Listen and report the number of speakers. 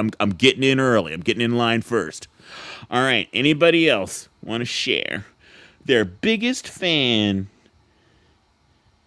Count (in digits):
1